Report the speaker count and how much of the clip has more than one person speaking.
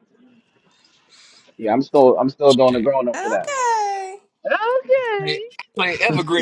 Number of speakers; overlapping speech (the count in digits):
3, about 14%